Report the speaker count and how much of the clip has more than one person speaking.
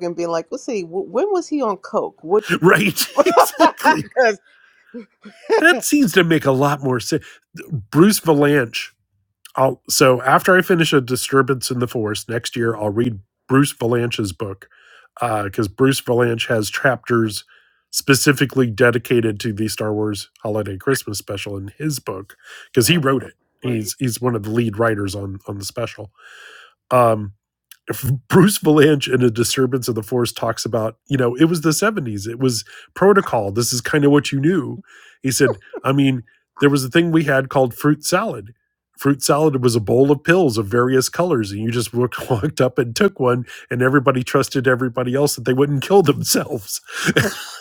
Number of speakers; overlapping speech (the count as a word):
two, about 5%